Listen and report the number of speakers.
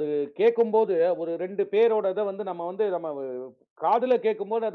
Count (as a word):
one